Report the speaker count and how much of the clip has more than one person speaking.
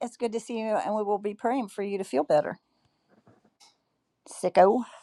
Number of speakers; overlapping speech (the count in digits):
1, no overlap